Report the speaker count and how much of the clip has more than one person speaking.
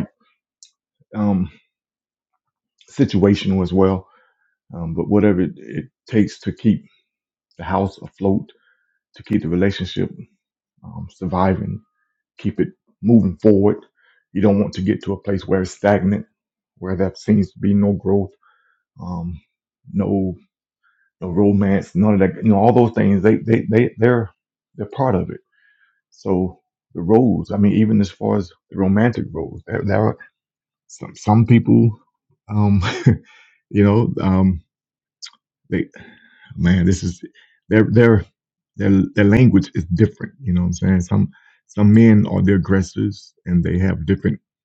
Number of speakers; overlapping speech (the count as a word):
one, no overlap